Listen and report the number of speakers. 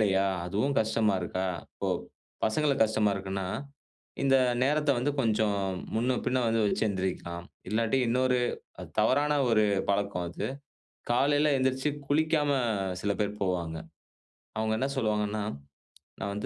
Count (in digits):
1